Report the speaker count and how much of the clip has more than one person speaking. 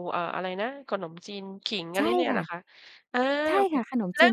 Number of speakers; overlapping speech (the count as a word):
two, about 25%